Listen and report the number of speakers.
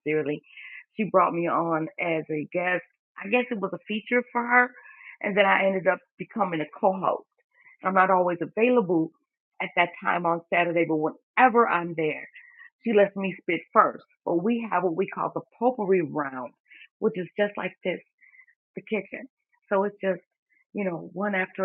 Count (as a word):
one